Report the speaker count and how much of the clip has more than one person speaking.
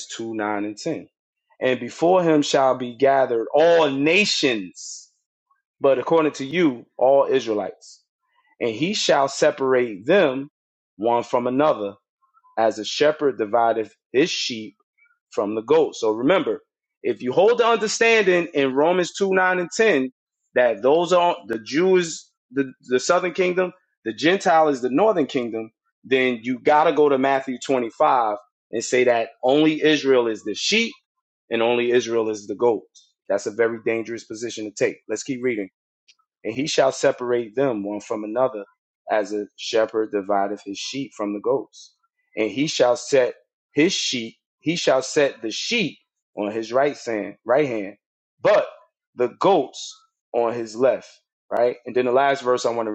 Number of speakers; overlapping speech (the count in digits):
1, no overlap